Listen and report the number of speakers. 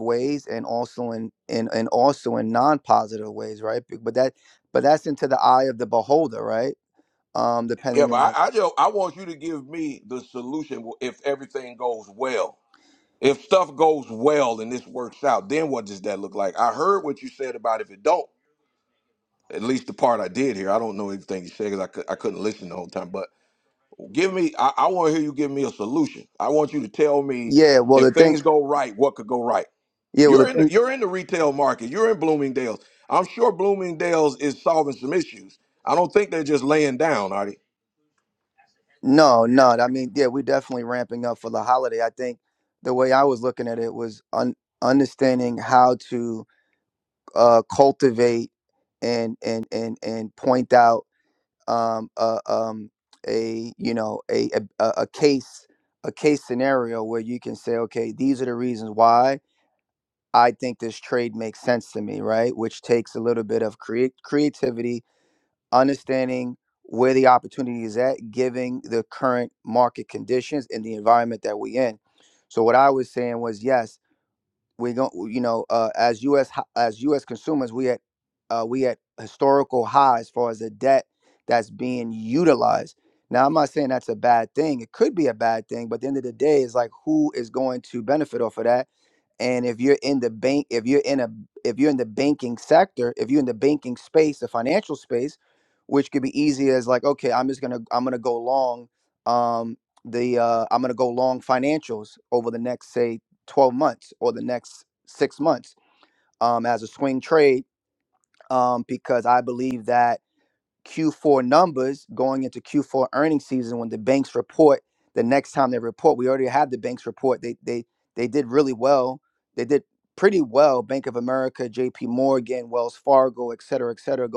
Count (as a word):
two